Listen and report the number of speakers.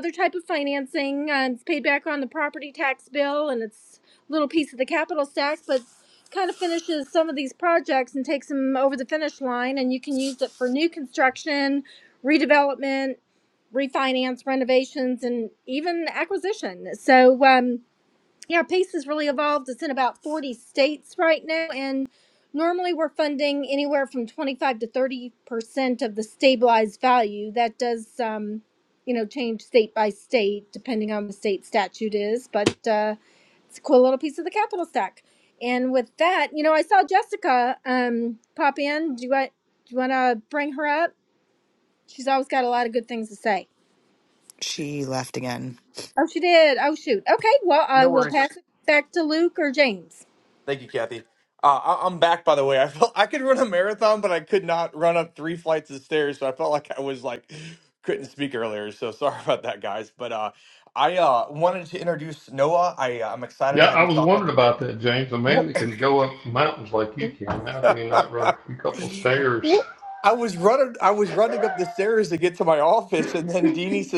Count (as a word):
four